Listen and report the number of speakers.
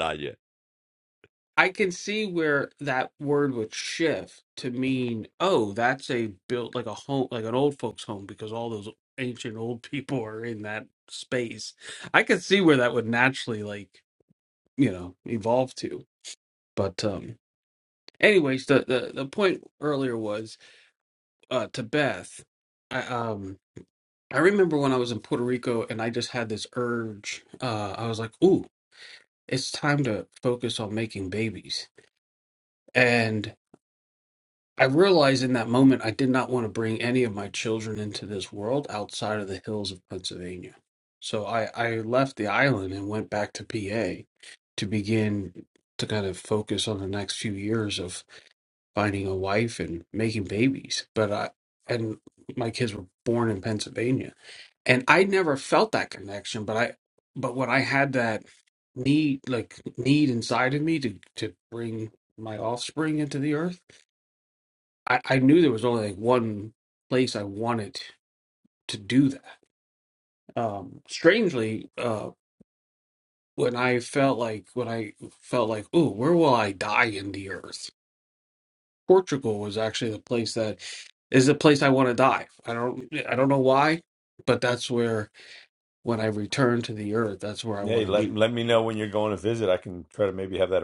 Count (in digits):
2